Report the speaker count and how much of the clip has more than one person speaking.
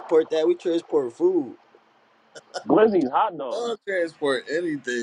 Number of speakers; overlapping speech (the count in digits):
3, about 4%